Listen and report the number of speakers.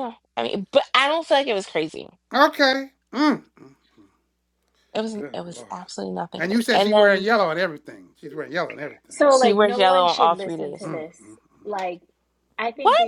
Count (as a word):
three